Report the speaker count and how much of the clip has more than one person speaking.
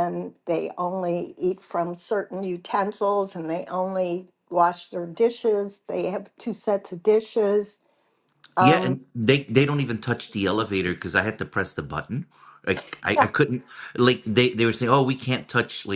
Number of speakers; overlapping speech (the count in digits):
2, about 3%